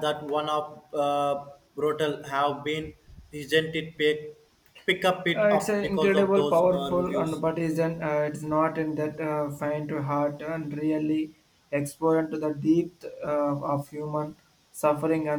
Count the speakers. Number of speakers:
2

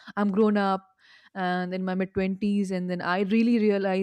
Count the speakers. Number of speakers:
1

